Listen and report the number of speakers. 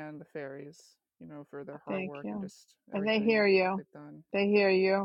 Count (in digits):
2